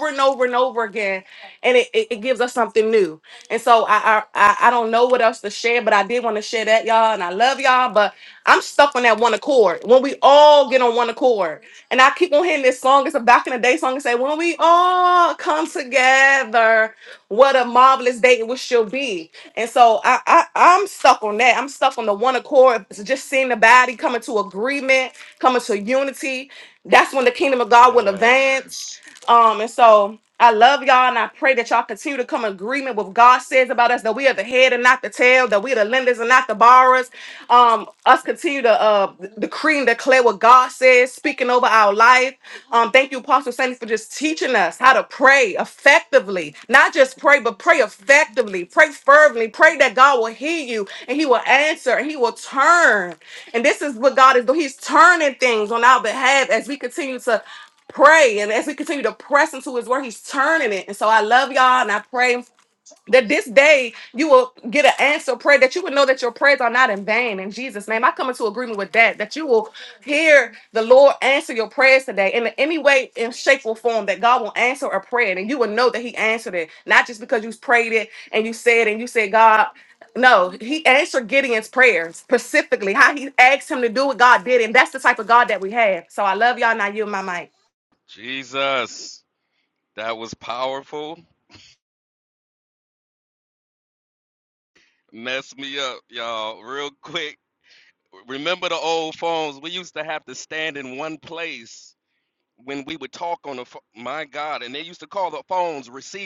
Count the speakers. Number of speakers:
two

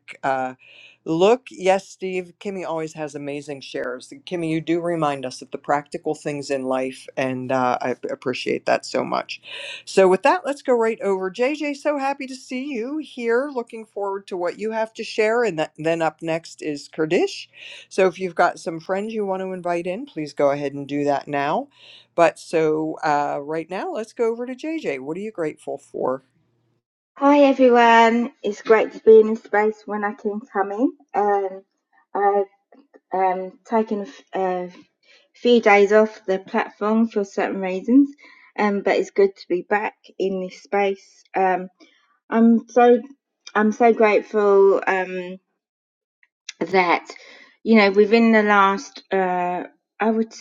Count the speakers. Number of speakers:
two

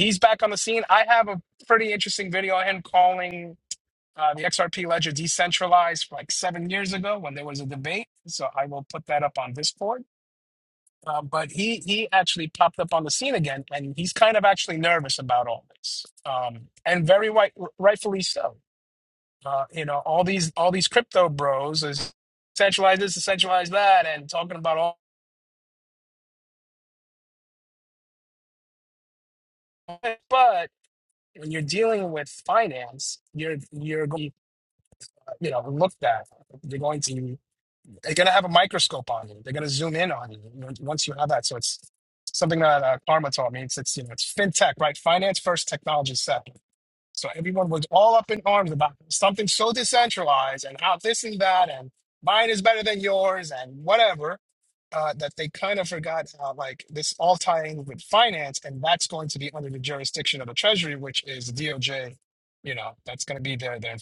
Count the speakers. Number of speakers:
one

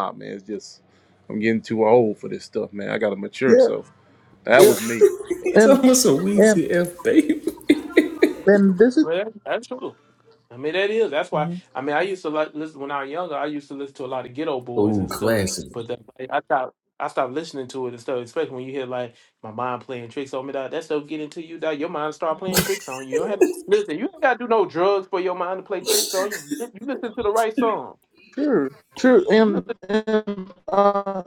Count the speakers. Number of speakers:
four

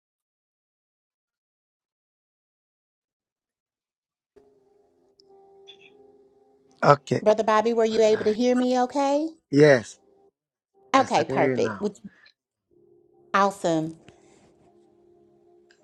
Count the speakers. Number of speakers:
two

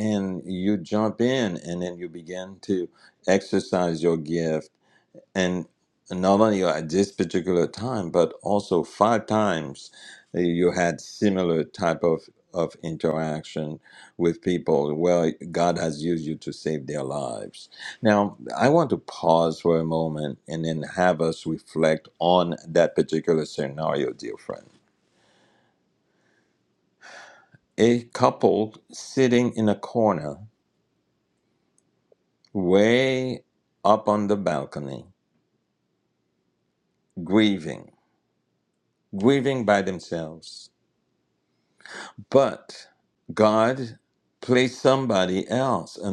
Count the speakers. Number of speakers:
one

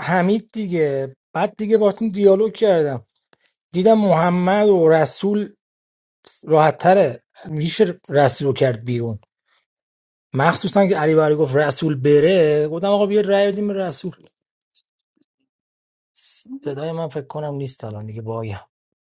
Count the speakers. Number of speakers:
one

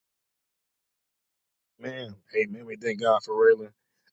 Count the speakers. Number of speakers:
one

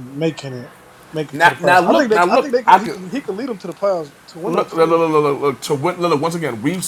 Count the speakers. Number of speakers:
two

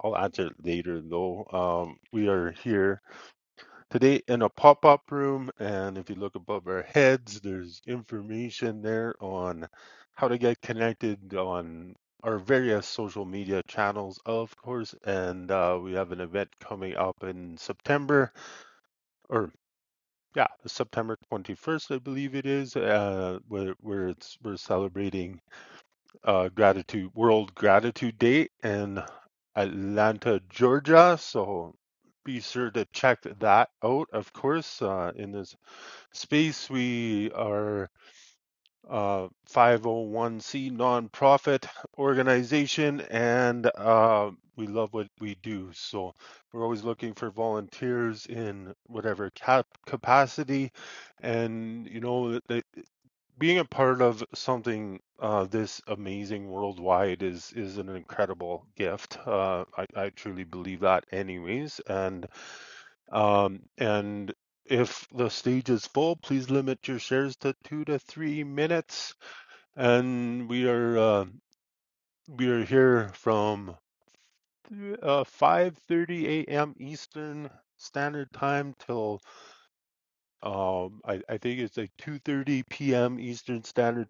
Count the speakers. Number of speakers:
one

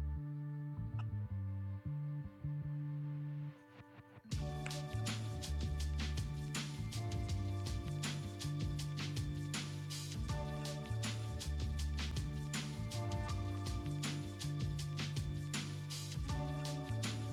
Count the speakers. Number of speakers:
zero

